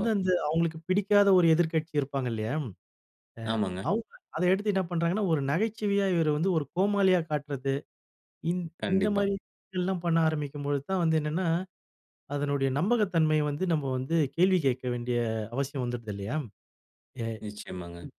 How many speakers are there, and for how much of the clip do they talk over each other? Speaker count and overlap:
2, about 3%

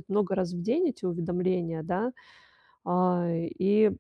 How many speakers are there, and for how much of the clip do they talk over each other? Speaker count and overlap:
1, no overlap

